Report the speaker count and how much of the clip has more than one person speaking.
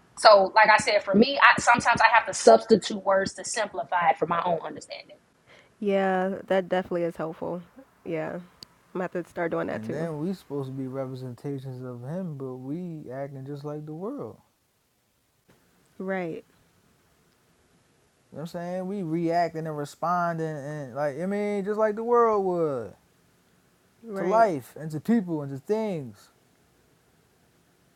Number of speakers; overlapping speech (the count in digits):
3, about 2%